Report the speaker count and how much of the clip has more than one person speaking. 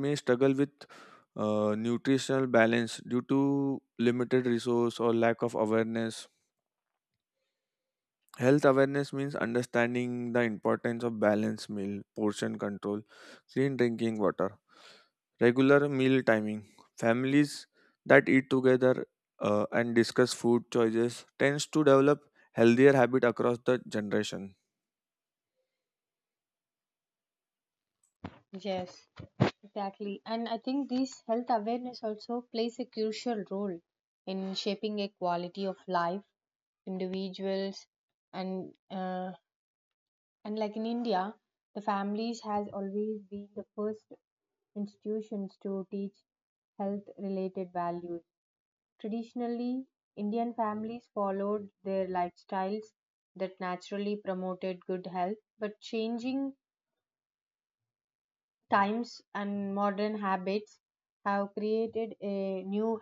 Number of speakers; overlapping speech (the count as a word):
two, no overlap